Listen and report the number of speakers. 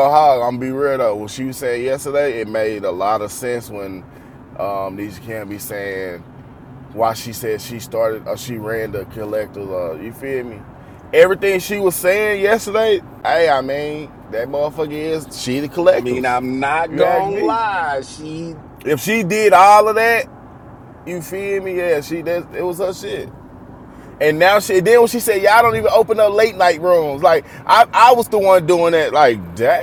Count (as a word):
two